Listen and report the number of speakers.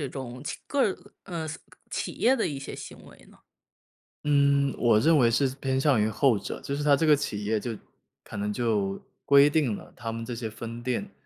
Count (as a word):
two